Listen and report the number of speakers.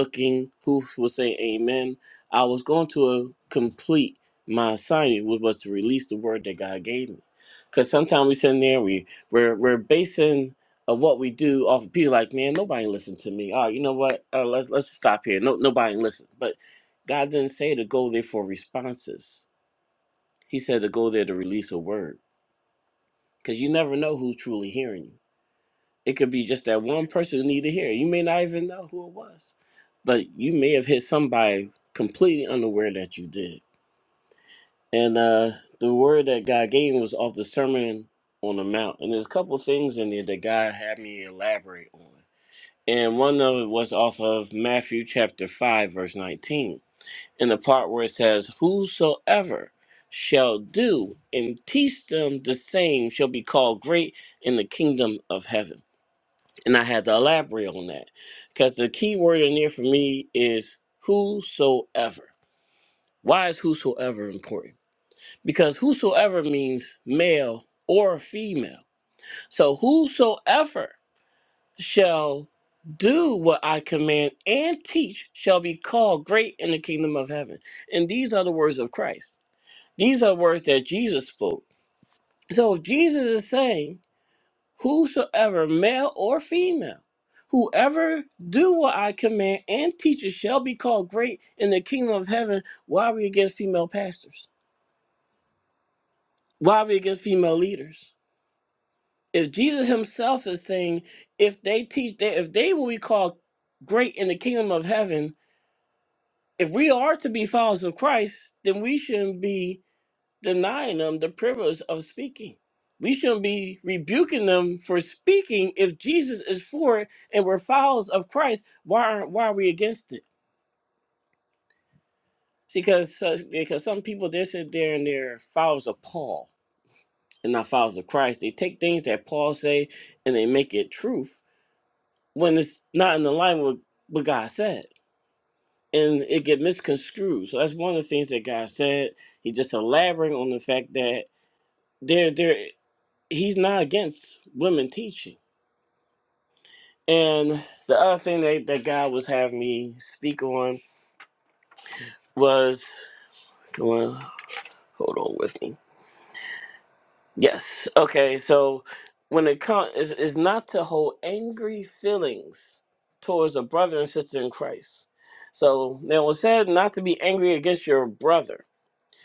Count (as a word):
one